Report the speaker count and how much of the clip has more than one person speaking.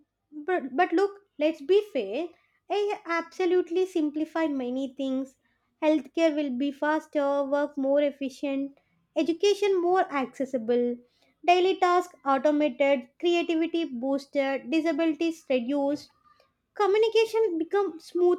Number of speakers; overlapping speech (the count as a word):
one, no overlap